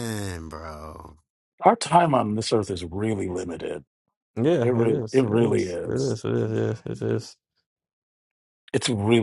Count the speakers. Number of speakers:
three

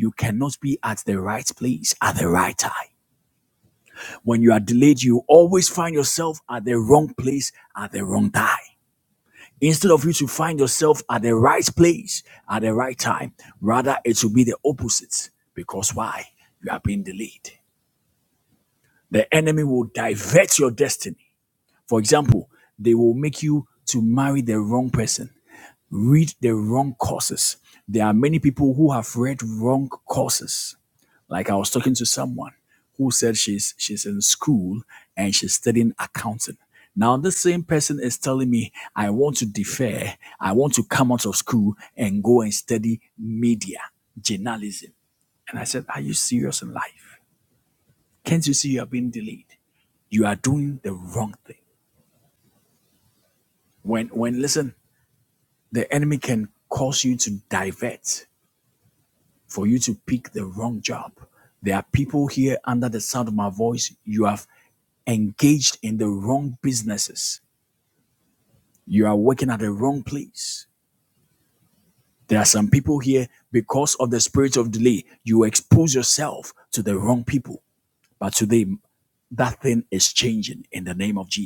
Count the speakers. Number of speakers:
one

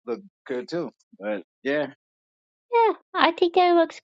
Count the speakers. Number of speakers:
two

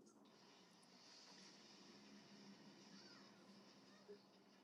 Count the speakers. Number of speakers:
zero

